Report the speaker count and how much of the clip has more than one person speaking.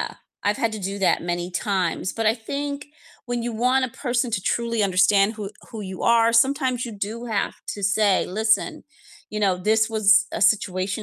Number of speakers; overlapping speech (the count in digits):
1, no overlap